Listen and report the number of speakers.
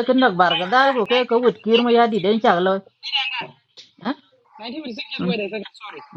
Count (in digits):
2